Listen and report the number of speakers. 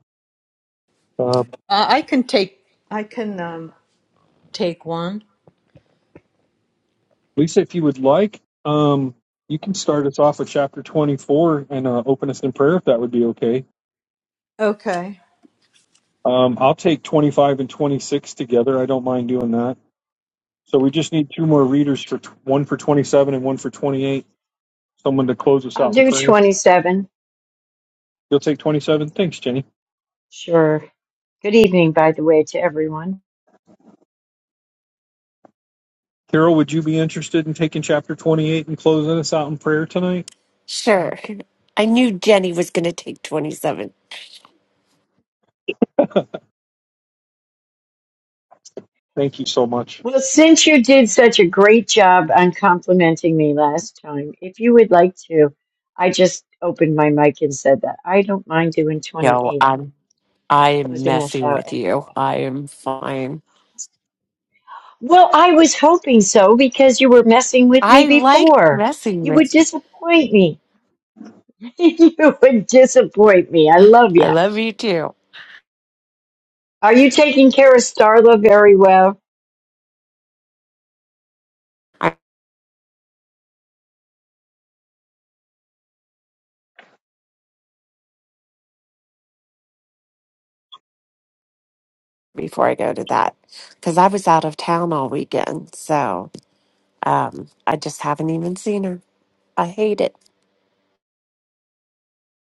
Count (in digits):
4